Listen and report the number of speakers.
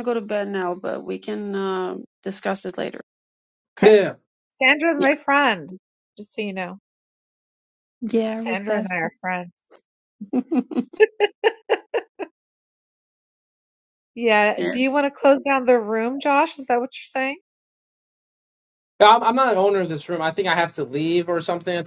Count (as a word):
three